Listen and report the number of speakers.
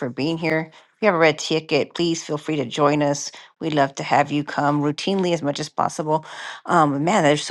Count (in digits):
1